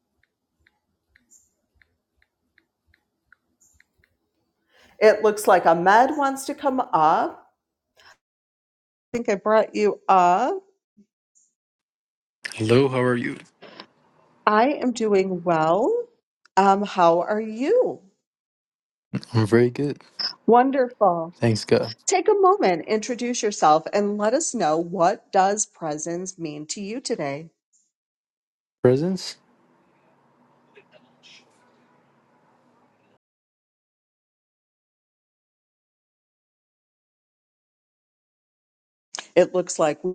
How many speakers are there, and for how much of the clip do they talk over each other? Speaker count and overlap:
2, no overlap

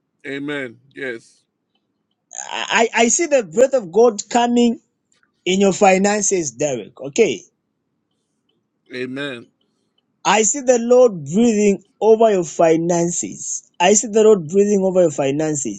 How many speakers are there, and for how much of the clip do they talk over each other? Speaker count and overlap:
2, no overlap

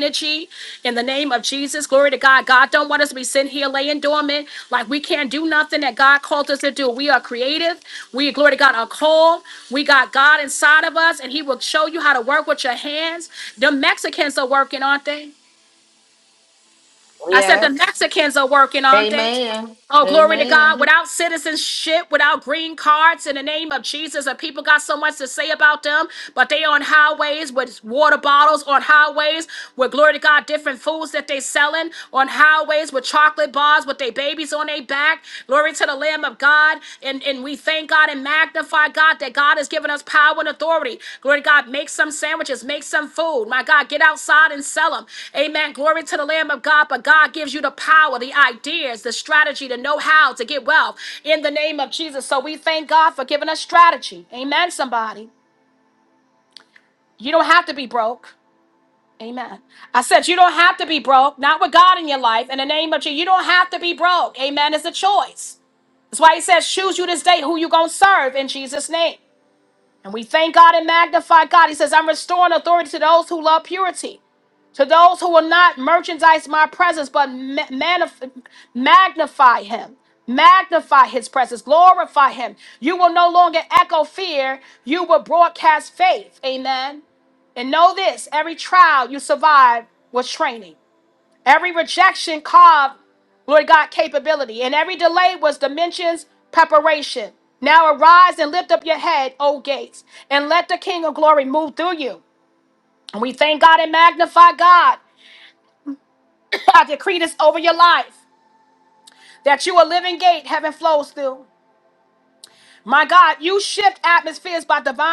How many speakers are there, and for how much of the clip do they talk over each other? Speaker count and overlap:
2, about 1%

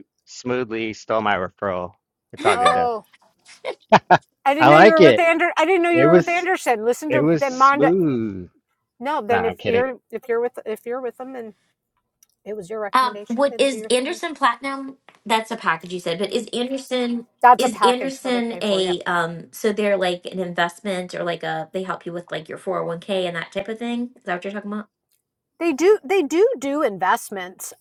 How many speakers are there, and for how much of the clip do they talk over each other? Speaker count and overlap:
3, about 18%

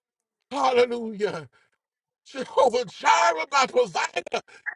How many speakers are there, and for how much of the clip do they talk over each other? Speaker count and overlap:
1, no overlap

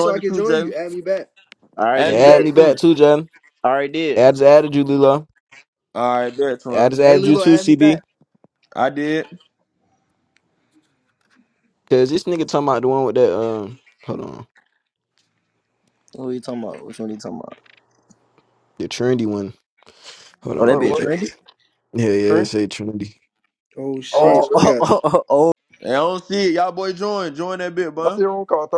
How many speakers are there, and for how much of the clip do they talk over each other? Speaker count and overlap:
6, about 15%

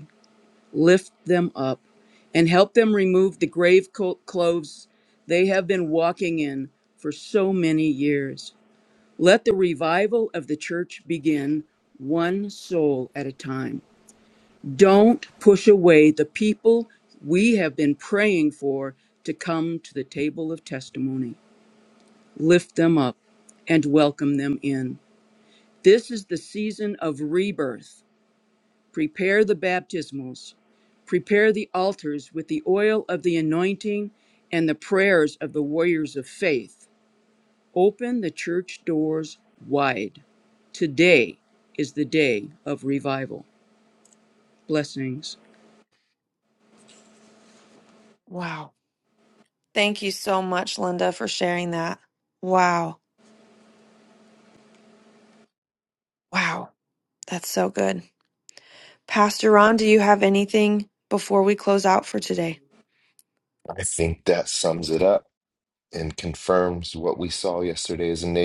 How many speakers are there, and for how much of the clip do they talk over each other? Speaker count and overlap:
3, no overlap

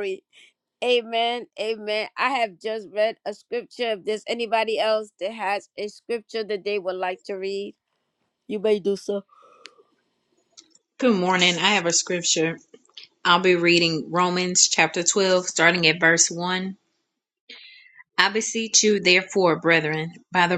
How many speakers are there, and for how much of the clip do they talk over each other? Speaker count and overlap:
2, no overlap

